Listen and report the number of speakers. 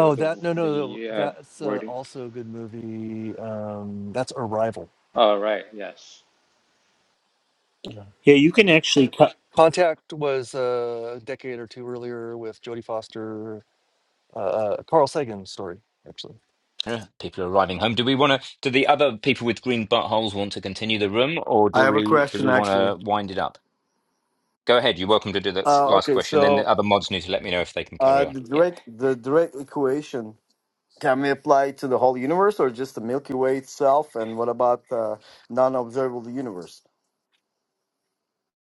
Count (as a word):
five